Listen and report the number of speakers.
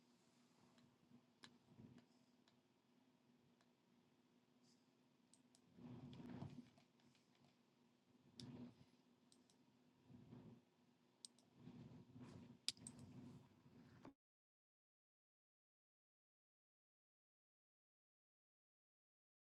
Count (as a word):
zero